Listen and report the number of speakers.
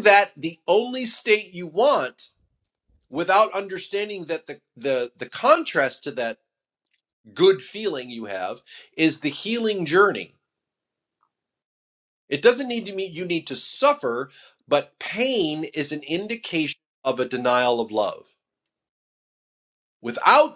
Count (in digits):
1